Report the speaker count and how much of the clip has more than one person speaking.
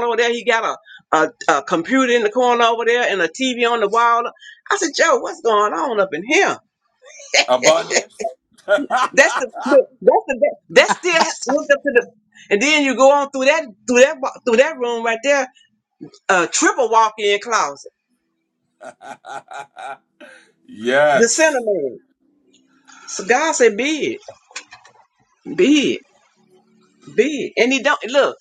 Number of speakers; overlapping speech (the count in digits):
2, under 1%